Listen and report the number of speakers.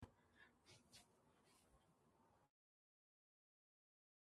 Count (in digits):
0